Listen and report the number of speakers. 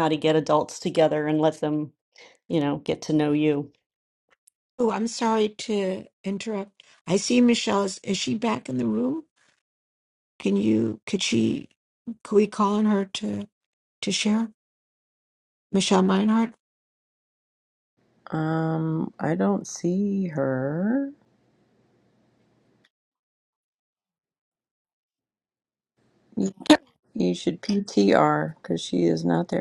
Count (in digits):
3